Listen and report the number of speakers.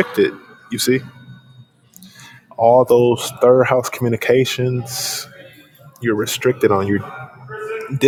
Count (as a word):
one